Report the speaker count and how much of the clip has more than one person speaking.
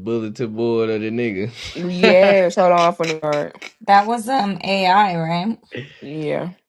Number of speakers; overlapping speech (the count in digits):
3, about 6%